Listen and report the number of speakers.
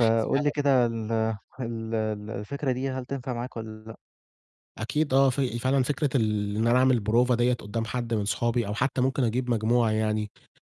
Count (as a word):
two